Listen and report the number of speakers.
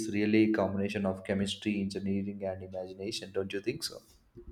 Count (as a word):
one